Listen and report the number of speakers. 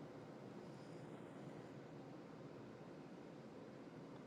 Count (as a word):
zero